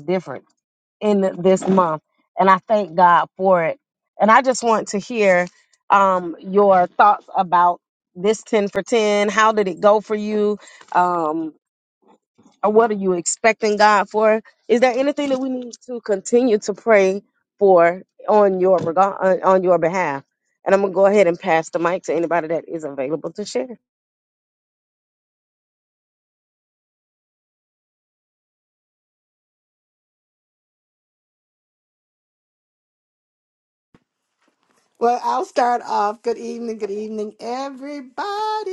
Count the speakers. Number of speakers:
2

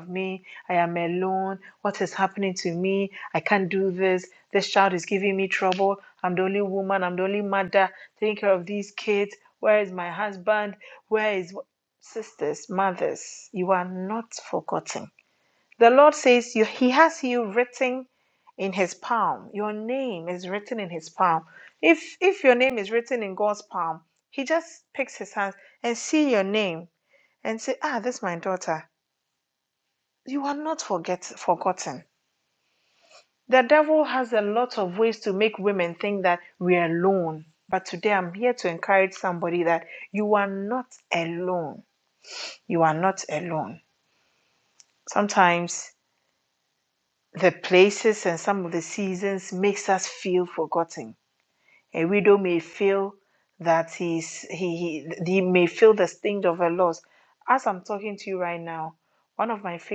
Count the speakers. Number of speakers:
1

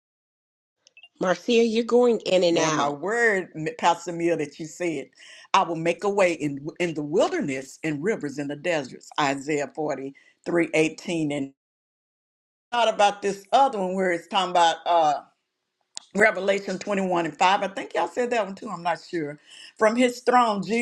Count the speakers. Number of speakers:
2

